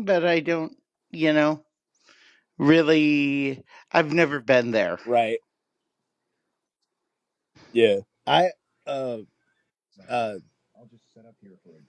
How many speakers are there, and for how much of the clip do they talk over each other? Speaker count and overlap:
two, no overlap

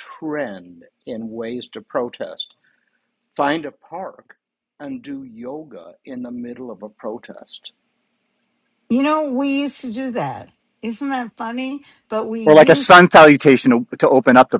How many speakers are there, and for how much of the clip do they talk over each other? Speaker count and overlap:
three, about 3%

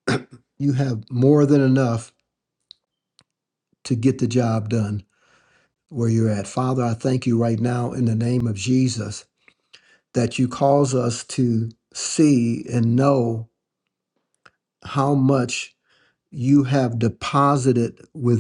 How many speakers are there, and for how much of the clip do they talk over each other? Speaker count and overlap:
one, no overlap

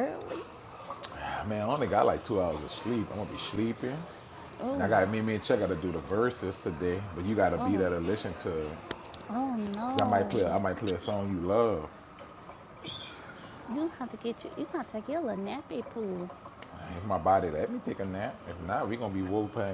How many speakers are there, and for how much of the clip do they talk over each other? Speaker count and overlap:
two, about 6%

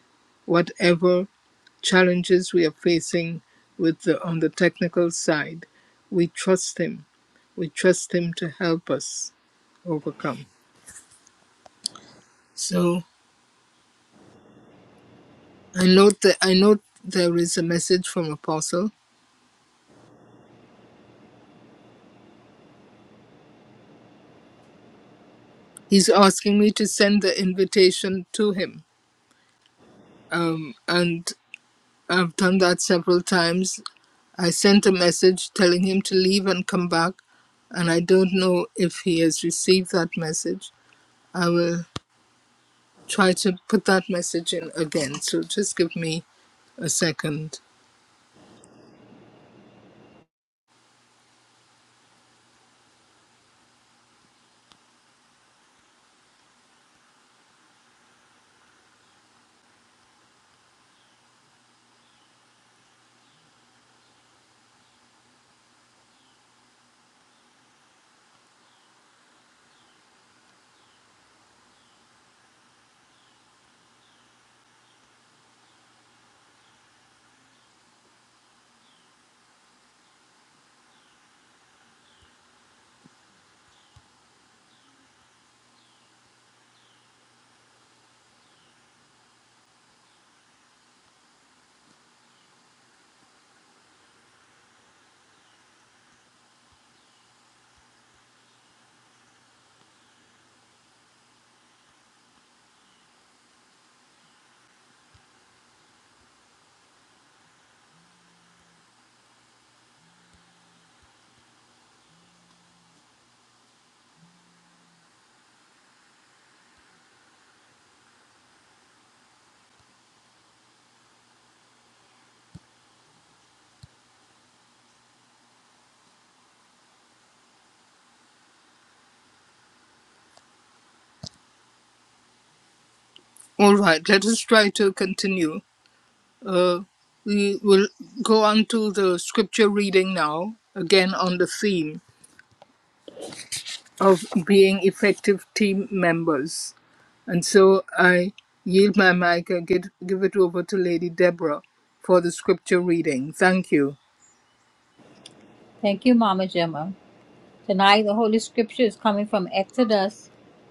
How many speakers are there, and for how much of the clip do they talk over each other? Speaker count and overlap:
two, no overlap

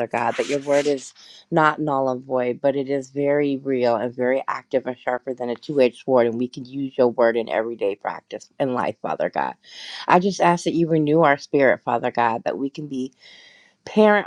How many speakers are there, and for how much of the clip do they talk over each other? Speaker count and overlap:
one, no overlap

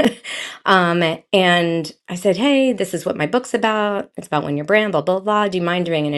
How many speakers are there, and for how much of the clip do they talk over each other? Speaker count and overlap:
one, no overlap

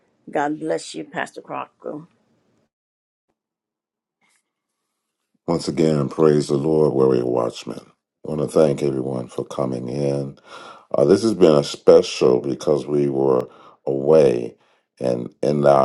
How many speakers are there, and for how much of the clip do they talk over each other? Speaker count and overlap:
two, no overlap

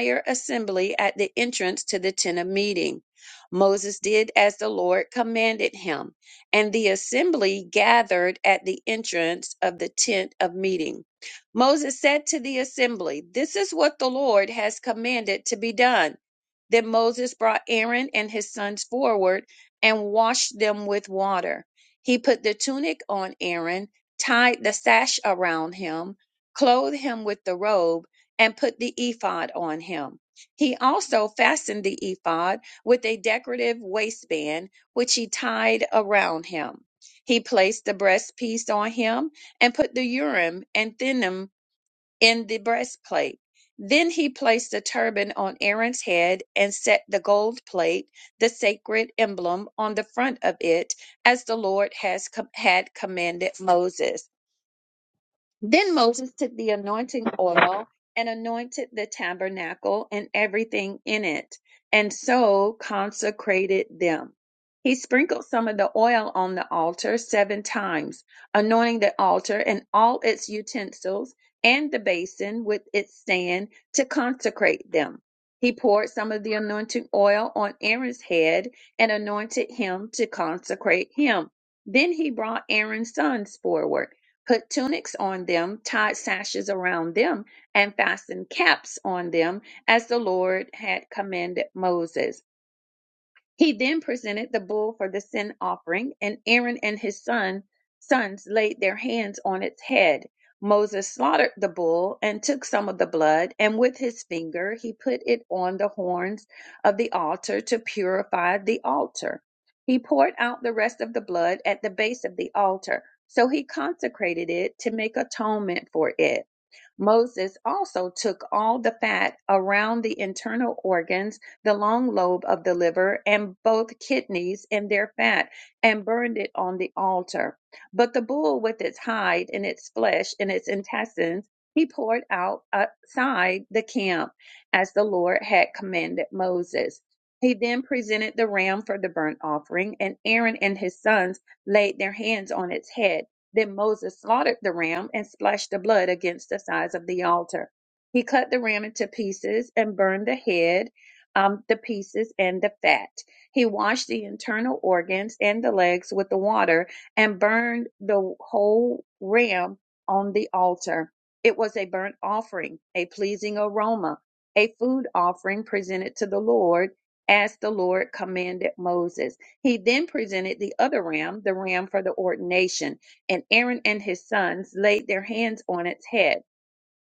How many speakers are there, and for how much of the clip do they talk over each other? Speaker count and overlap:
one, no overlap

